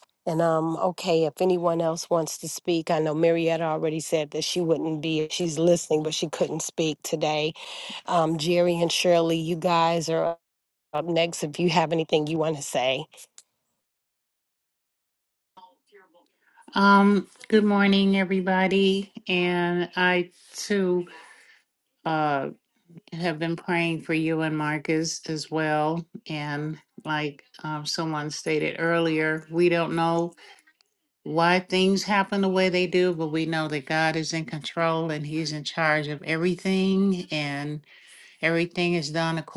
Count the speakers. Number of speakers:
two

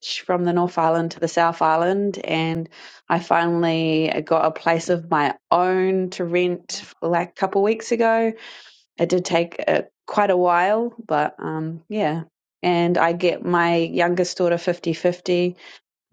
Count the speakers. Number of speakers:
one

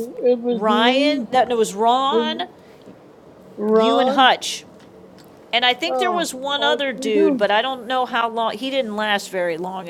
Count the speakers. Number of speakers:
two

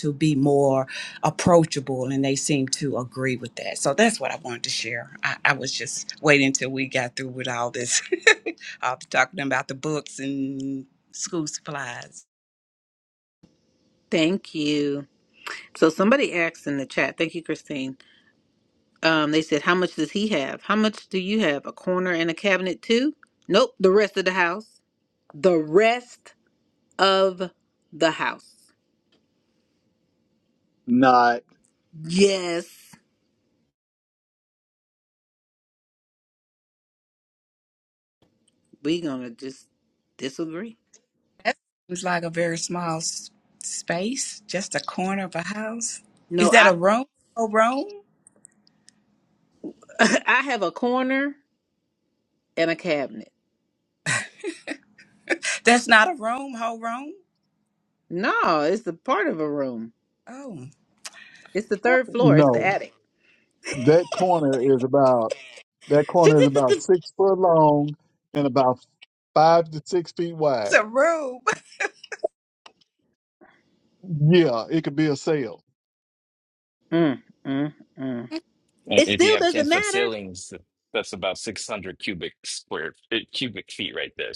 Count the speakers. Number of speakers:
four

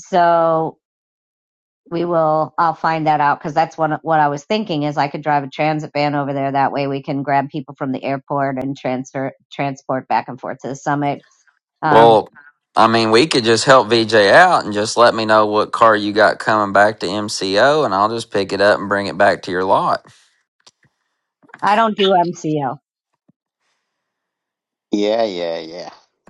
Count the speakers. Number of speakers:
three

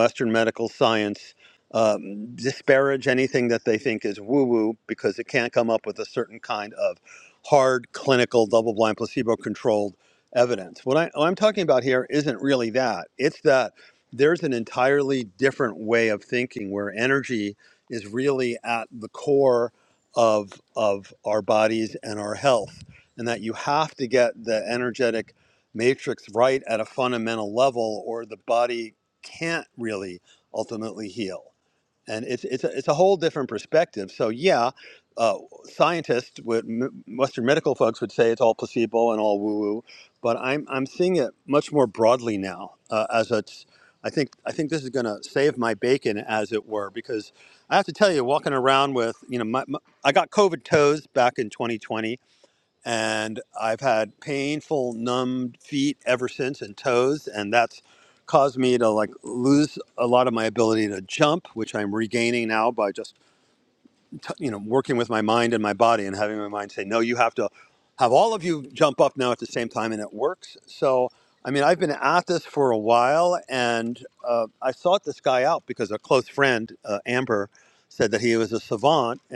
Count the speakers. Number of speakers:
one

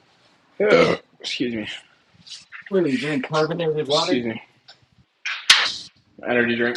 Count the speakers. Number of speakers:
two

